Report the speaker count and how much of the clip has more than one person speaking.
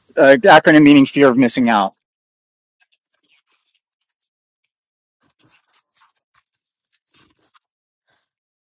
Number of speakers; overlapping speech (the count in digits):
1, no overlap